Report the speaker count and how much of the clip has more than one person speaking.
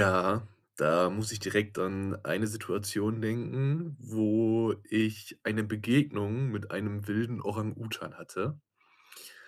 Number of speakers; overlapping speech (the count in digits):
1, no overlap